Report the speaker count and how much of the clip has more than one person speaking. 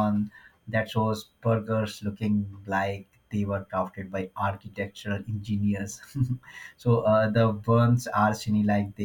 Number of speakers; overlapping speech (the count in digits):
1, no overlap